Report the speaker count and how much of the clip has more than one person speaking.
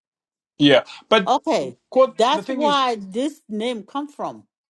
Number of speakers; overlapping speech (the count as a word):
two, about 12%